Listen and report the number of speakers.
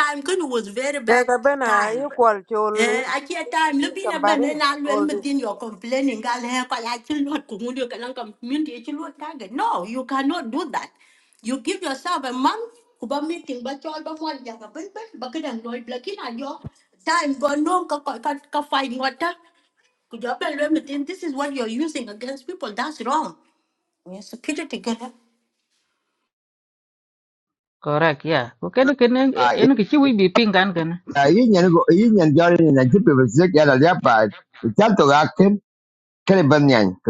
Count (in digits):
4